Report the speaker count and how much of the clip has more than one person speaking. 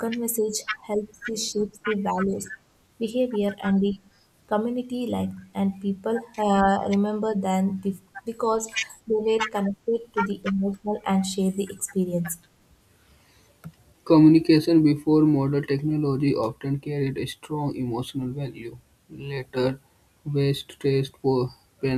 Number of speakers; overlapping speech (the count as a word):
two, no overlap